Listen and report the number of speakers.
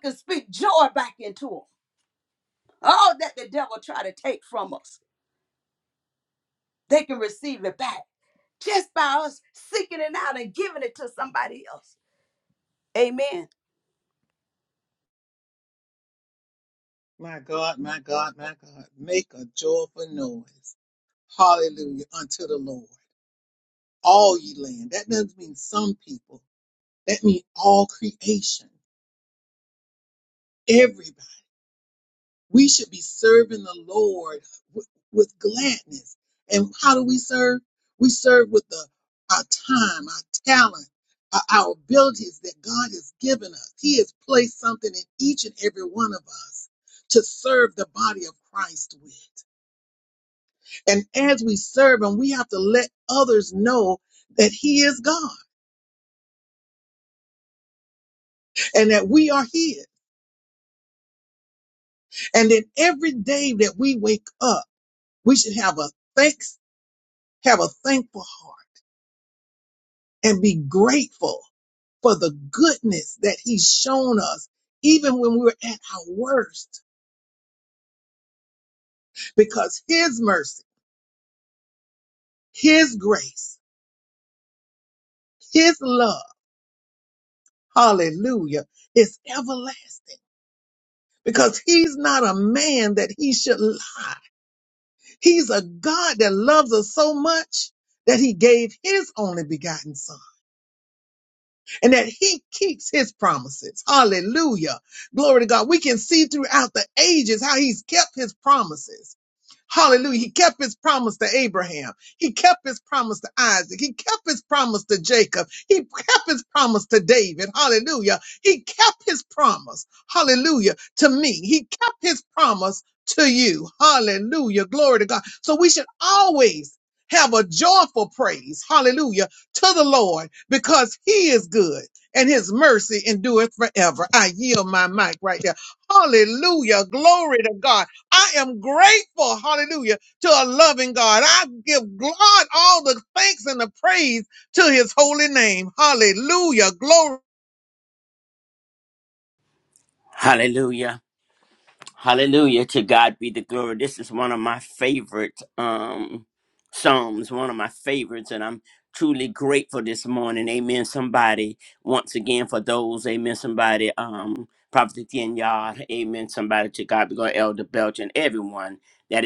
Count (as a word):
three